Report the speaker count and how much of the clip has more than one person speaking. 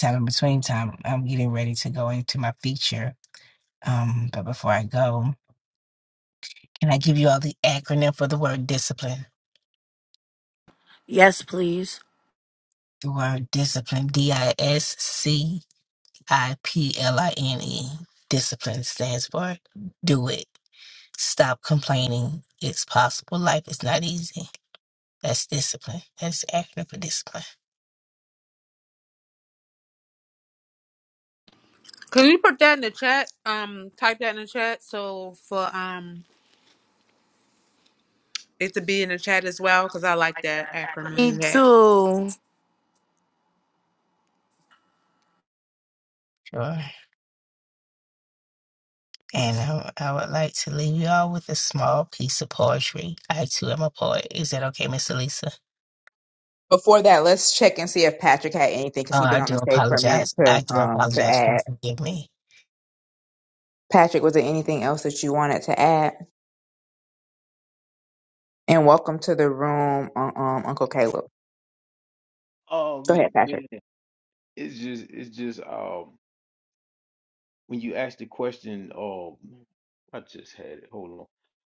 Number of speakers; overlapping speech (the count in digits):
5, about 4%